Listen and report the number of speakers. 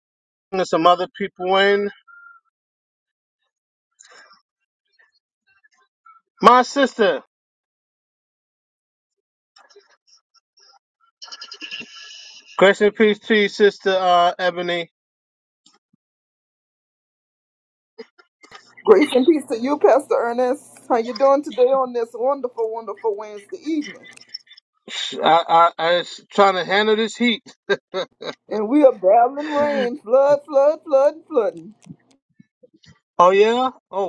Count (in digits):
2